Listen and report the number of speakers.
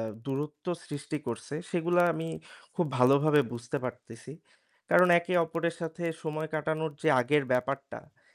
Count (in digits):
1